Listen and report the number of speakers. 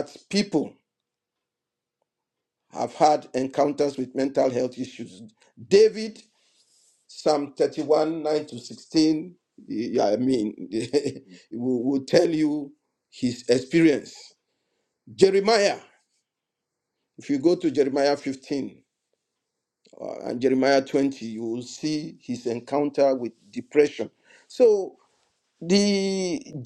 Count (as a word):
one